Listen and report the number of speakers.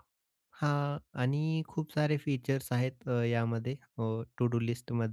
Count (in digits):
1